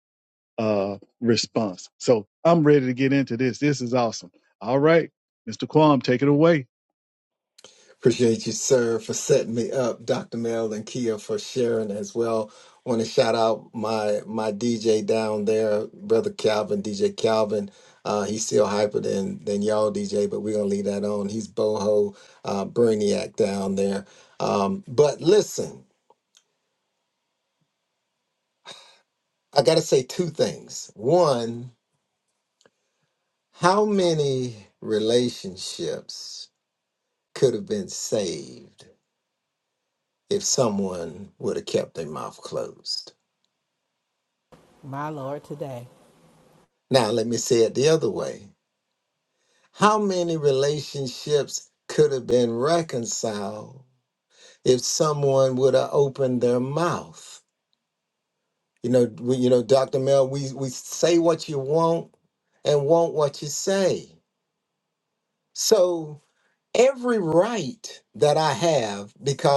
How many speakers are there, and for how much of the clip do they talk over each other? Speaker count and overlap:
three, no overlap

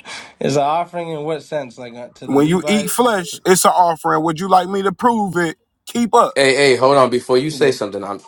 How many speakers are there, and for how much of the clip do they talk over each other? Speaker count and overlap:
three, about 11%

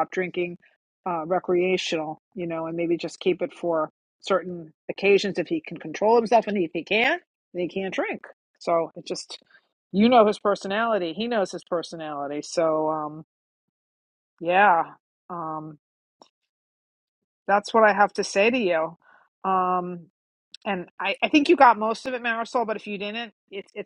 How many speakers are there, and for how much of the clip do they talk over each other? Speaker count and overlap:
one, no overlap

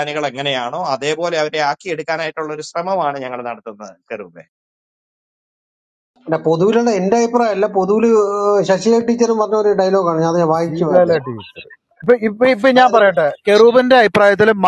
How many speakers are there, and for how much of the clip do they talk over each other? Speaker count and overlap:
three, about 6%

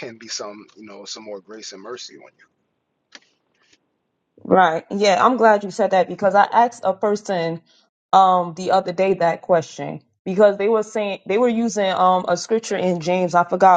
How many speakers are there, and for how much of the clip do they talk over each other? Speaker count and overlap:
two, no overlap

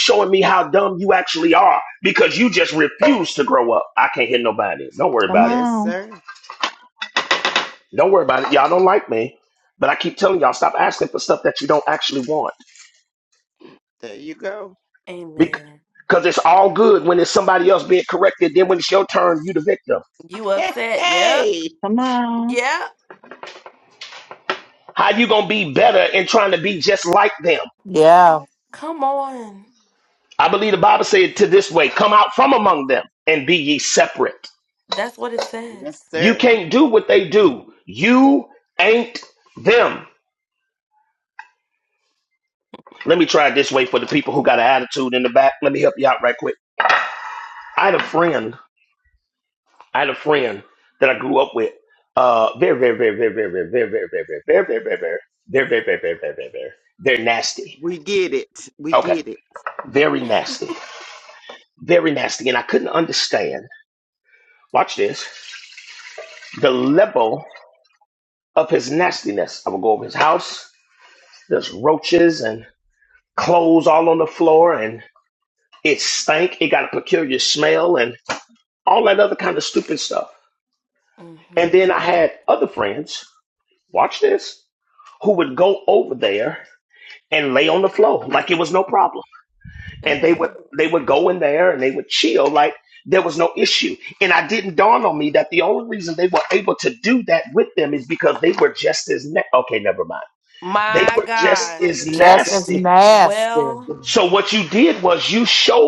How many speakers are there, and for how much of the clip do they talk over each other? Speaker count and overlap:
five, about 5%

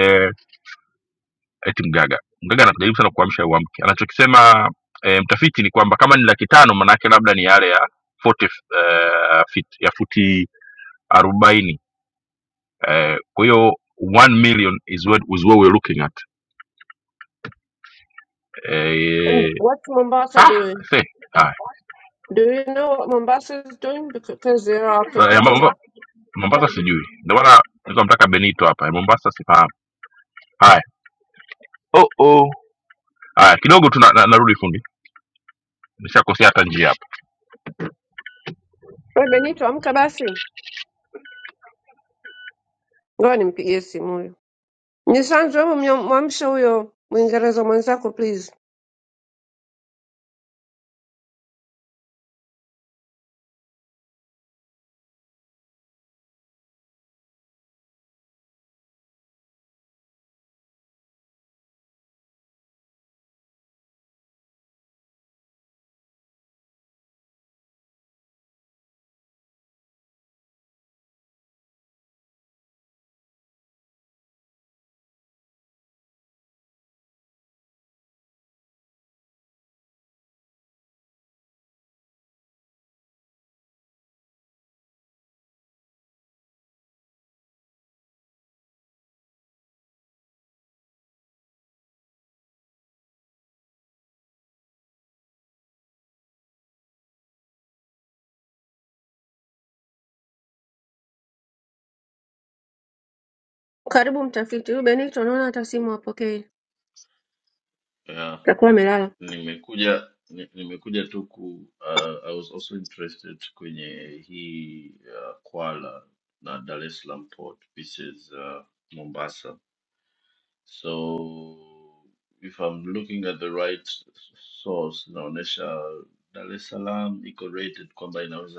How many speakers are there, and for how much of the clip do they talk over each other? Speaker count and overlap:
three, about 1%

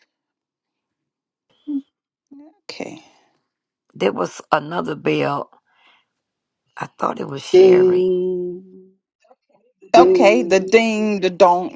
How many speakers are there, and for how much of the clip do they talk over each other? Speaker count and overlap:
three, about 10%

